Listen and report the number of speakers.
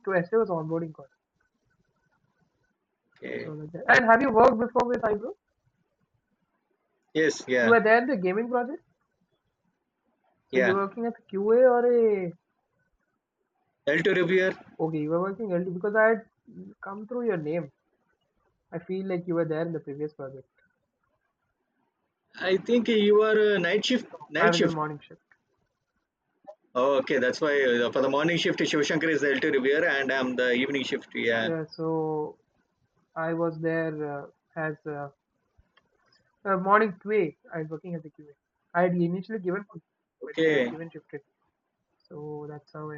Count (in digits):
2